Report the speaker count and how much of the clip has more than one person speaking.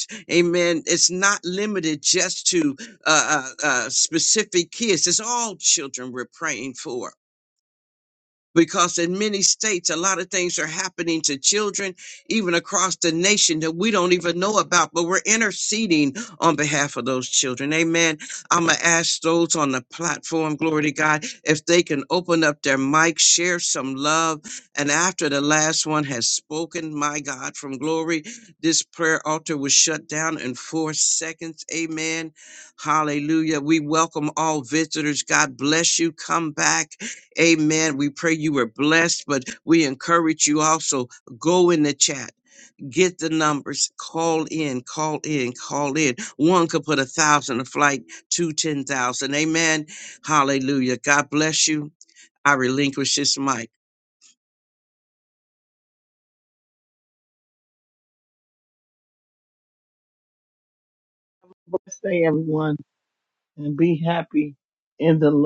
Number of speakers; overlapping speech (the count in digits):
2, no overlap